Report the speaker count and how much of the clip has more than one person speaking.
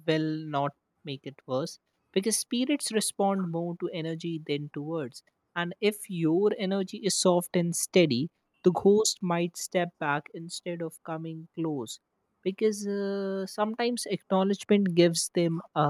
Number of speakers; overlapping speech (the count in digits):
1, no overlap